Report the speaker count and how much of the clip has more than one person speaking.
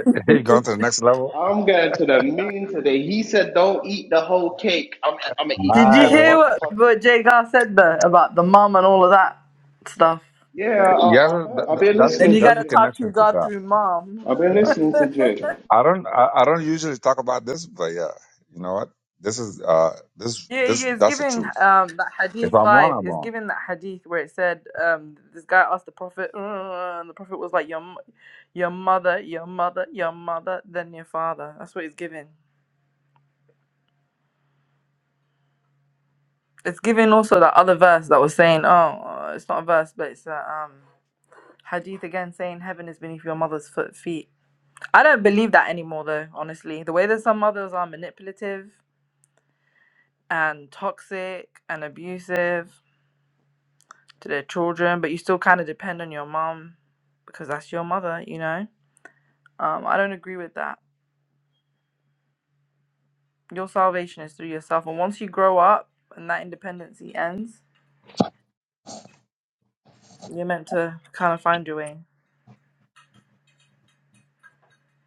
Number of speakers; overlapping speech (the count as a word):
three, about 8%